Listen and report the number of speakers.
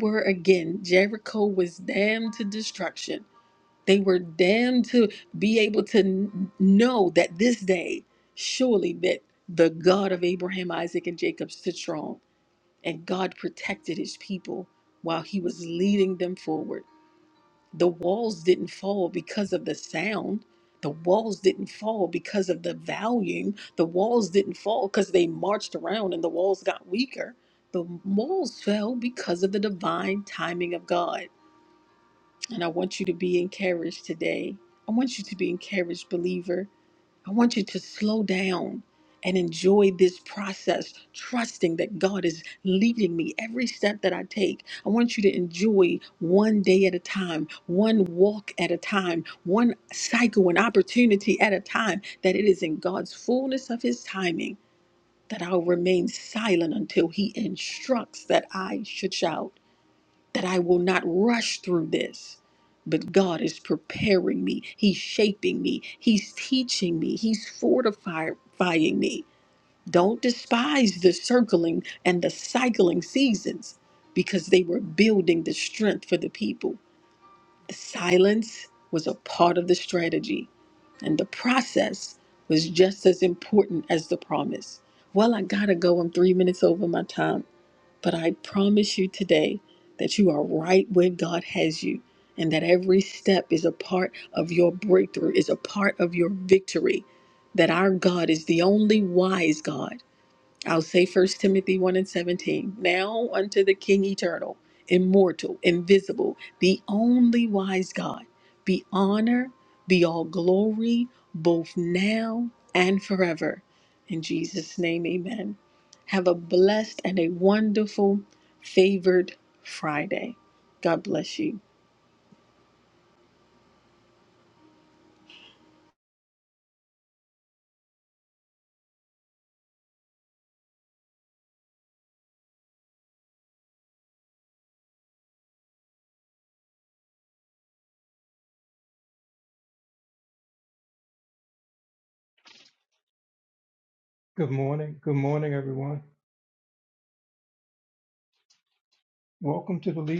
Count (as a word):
two